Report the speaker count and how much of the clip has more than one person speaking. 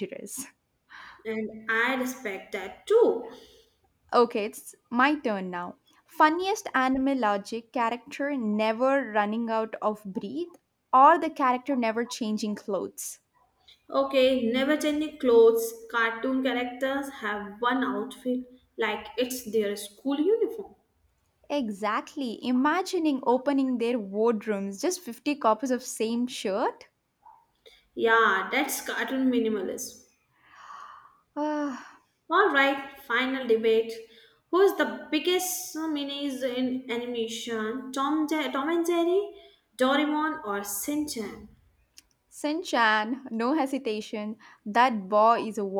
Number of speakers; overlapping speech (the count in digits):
2, no overlap